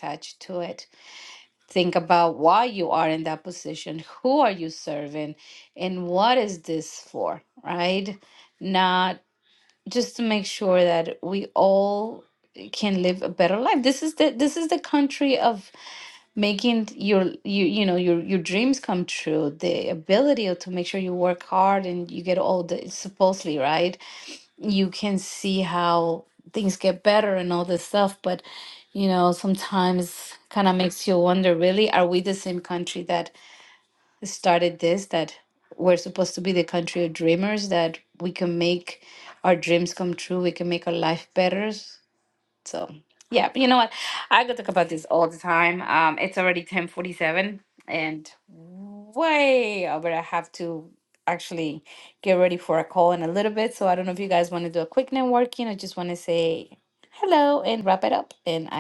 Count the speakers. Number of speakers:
1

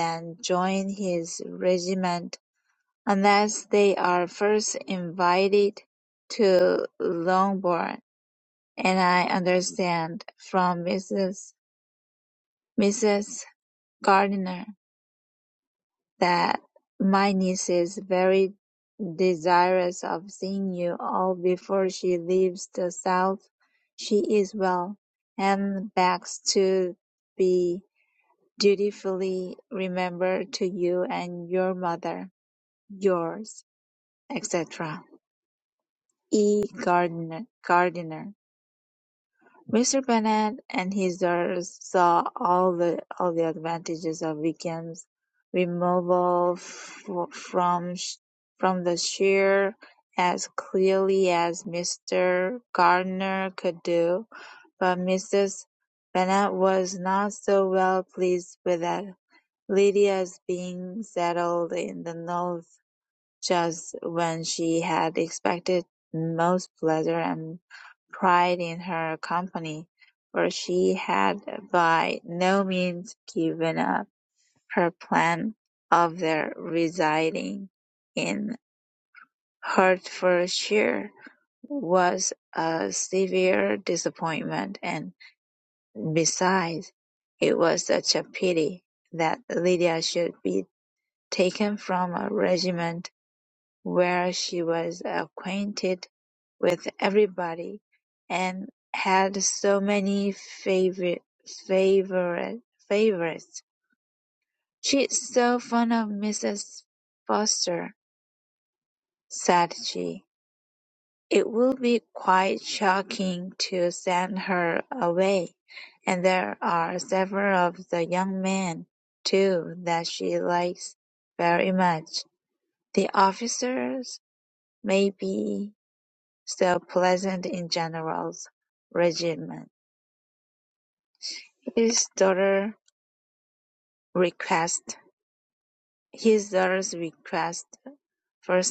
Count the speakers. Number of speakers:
1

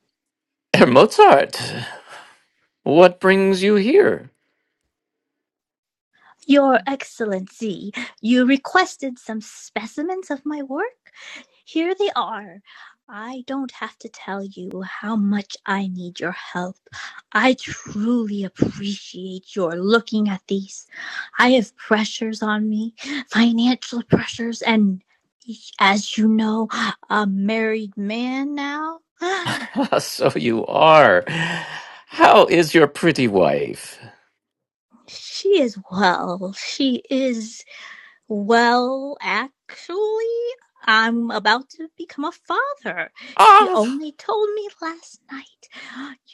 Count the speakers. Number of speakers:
2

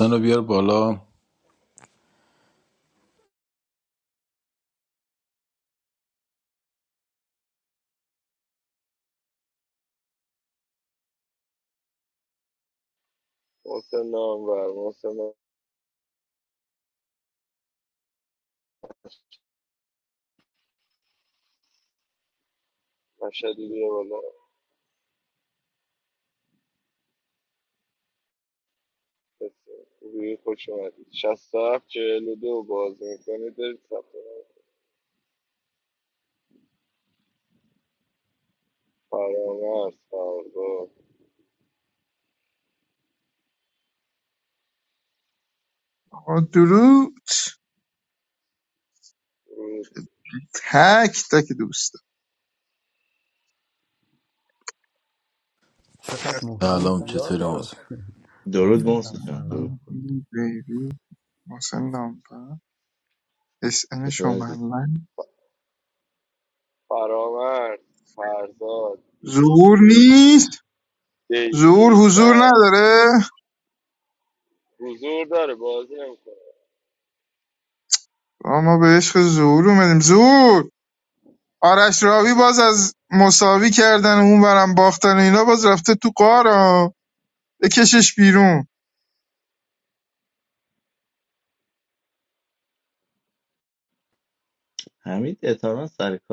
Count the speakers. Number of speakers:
5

